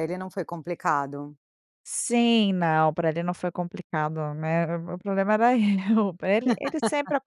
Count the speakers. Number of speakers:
two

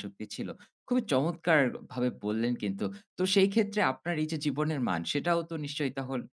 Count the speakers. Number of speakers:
one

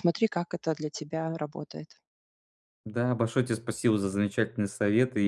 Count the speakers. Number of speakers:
two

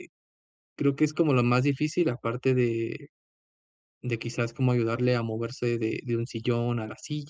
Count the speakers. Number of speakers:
one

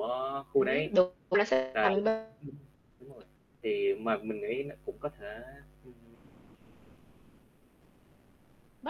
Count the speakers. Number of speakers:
two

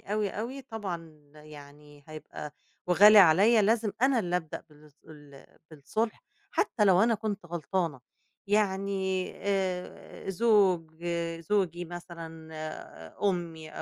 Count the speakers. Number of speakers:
one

